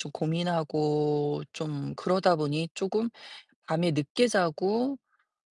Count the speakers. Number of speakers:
1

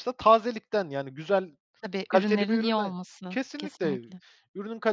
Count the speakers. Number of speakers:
2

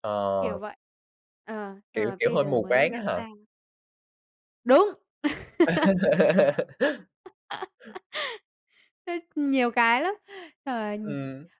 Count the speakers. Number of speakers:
2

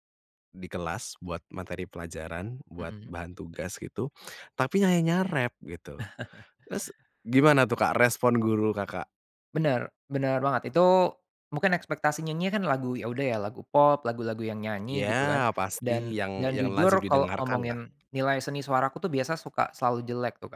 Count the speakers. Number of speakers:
2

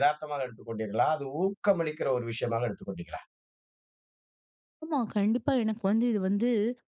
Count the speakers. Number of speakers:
2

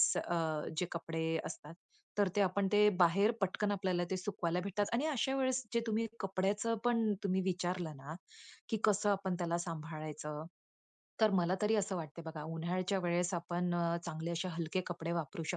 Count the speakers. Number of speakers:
1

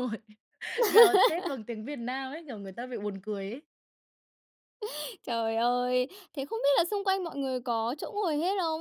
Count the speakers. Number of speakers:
2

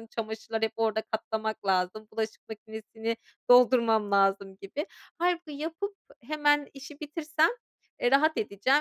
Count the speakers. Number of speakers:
1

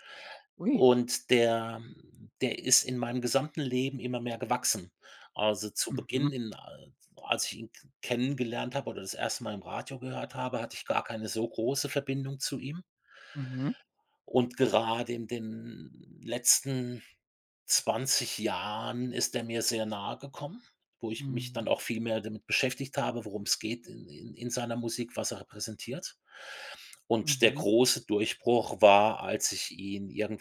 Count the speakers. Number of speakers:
2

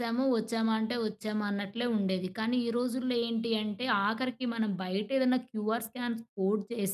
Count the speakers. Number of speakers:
1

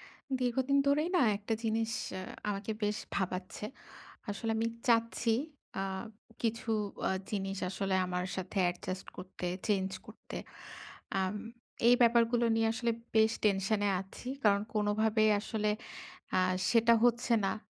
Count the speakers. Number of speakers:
1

